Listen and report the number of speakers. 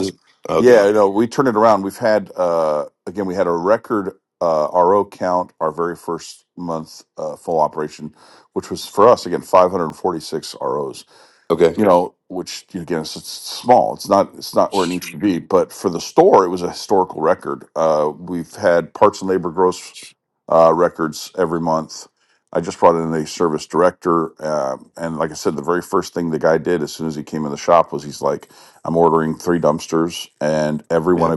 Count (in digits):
2